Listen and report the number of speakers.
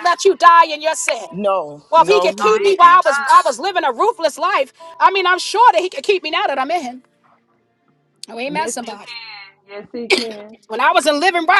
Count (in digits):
3